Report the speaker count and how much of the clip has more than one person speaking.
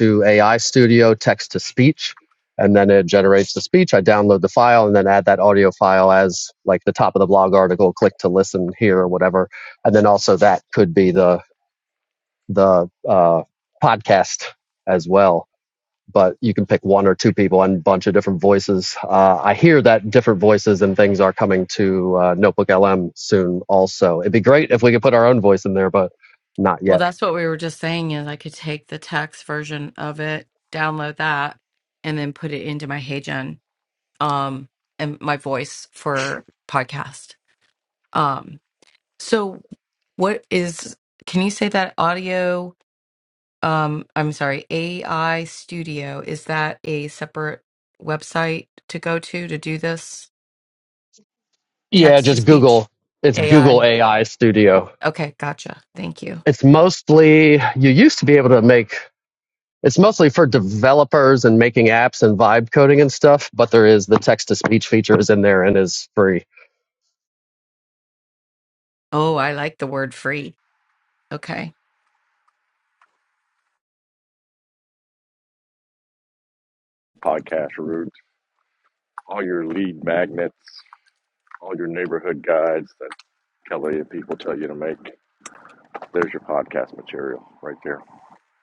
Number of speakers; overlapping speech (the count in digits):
3, about 2%